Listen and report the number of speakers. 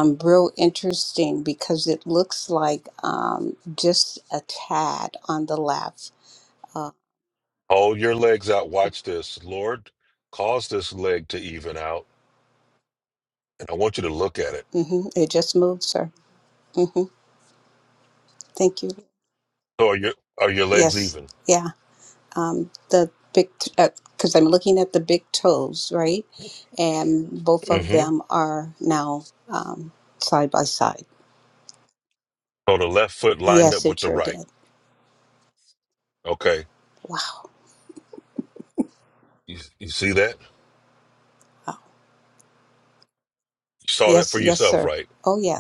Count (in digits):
2